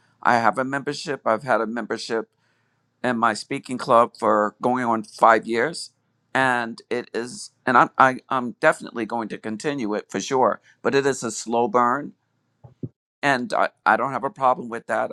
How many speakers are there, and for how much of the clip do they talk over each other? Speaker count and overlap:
one, no overlap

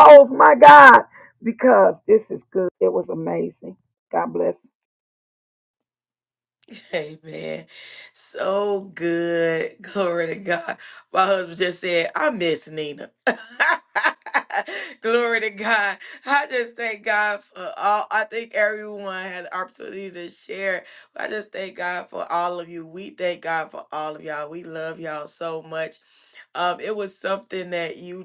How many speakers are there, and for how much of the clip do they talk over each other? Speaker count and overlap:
two, no overlap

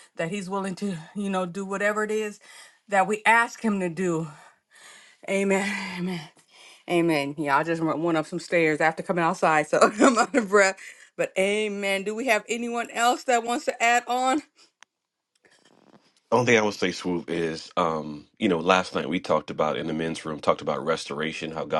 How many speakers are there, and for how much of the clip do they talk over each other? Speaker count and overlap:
two, no overlap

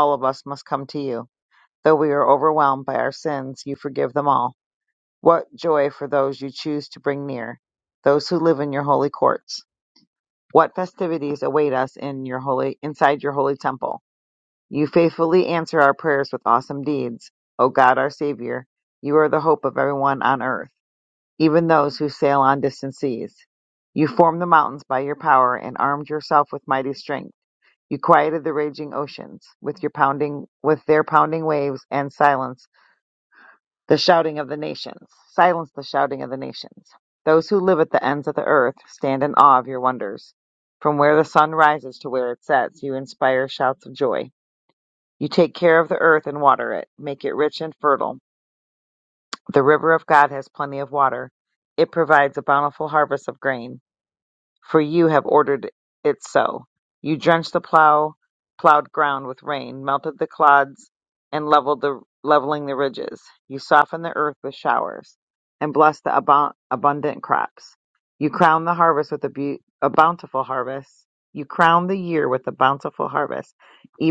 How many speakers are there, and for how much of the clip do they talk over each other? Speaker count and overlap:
one, no overlap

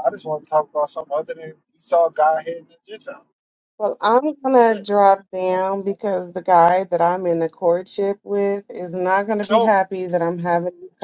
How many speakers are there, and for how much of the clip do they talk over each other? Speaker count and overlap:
two, about 5%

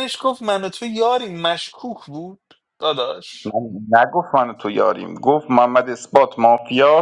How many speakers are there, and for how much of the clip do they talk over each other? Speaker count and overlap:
two, under 1%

